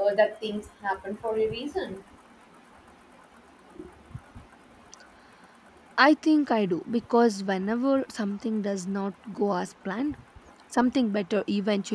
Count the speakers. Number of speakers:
2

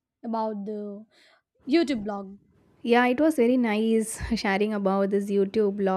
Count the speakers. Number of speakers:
2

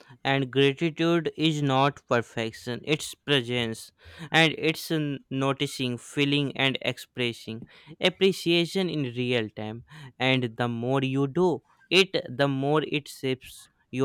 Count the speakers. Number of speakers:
1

